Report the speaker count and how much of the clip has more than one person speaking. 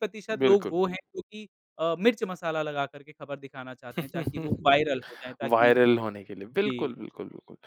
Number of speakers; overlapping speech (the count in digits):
2, about 13%